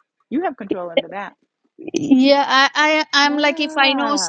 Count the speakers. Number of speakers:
2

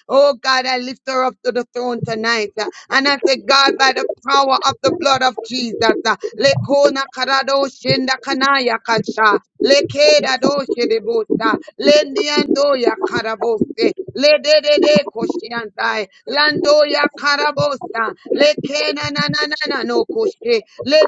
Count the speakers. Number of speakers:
1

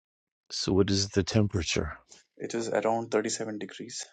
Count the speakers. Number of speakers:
2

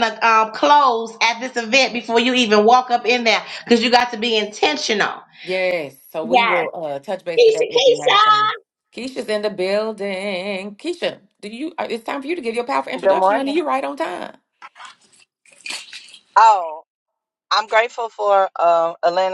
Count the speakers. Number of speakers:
3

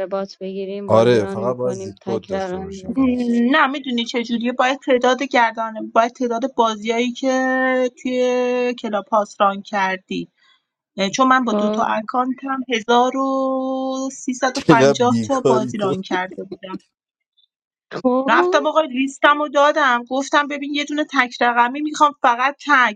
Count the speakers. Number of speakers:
3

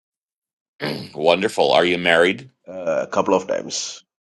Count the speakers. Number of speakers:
2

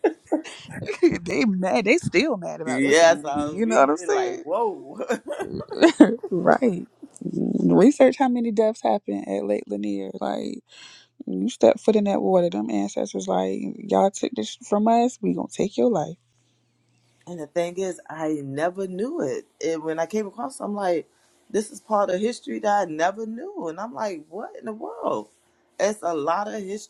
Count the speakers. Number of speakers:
2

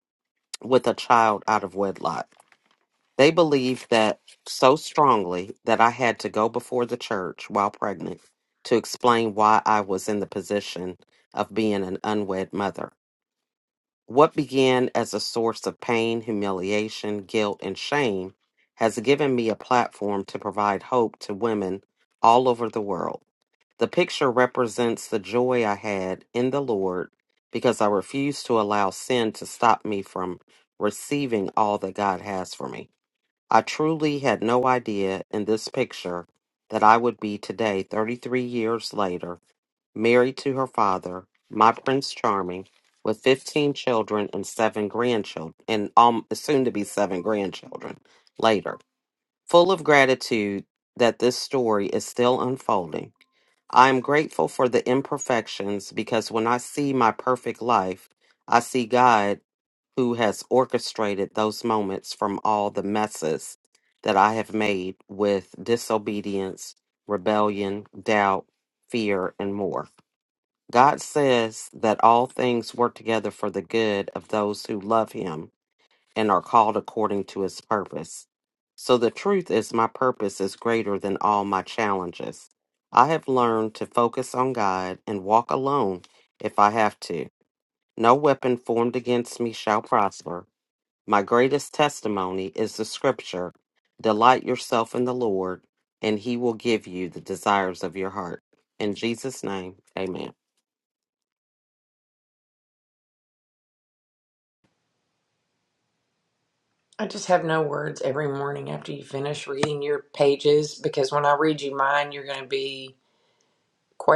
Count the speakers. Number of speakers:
2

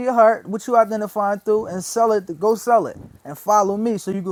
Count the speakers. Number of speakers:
1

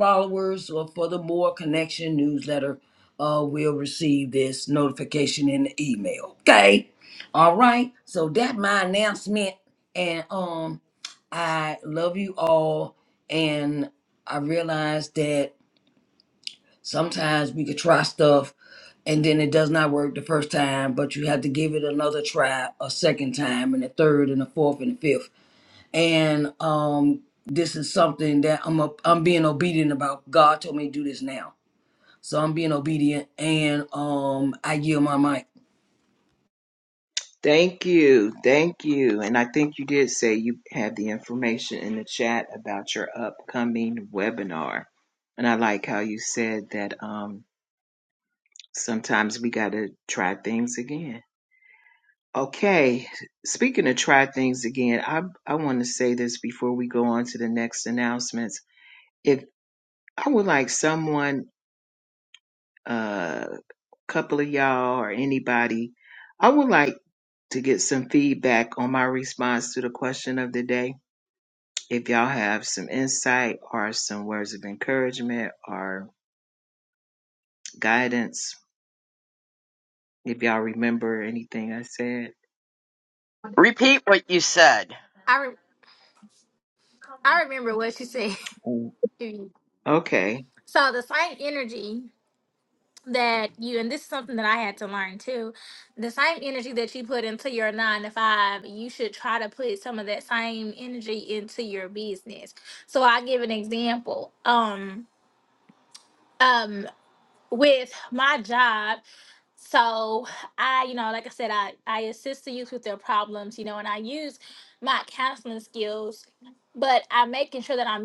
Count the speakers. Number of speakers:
4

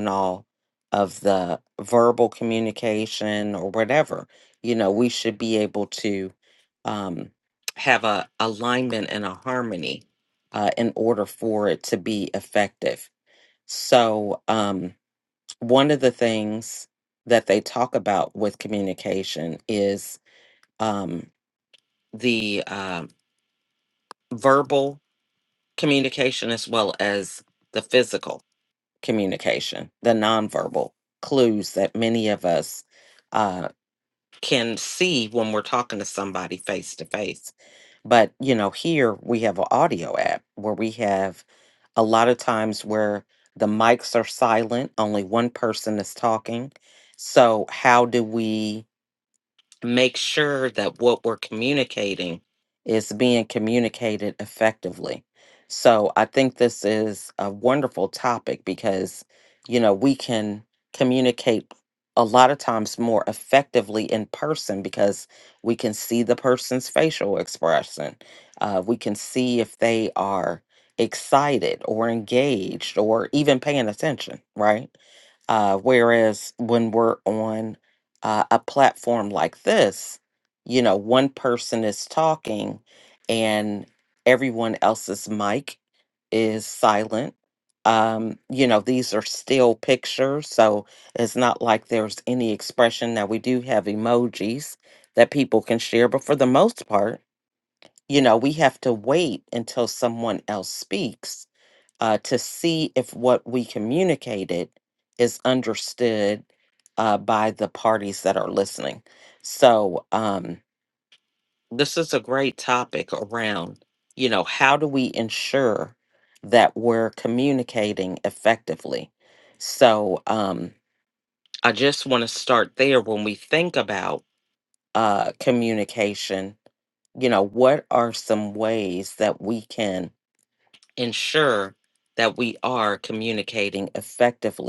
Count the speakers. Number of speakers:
1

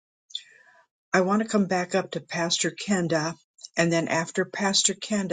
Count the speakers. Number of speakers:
1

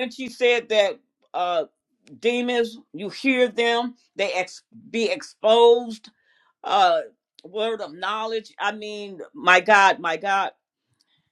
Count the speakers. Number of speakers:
1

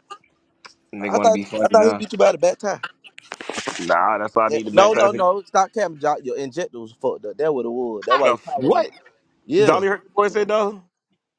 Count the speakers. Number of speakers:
2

